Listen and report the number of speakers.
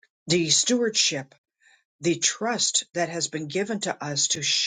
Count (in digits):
1